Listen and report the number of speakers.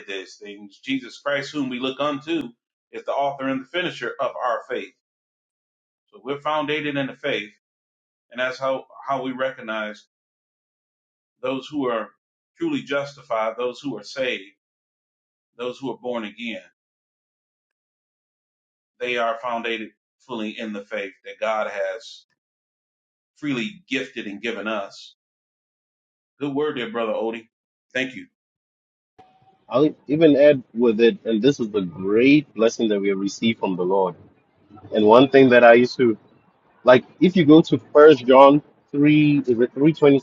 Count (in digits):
2